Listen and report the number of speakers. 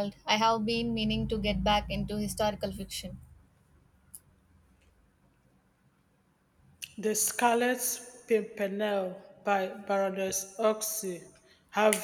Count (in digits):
2